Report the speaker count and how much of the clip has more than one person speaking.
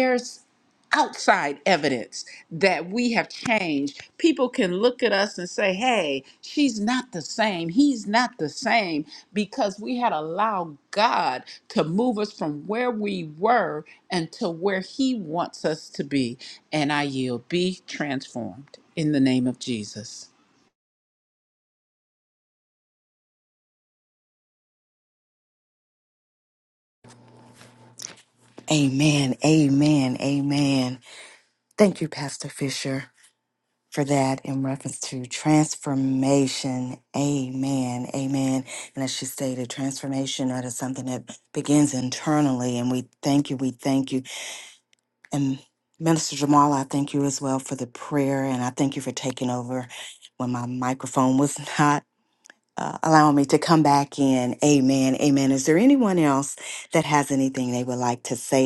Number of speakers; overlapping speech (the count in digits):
2, no overlap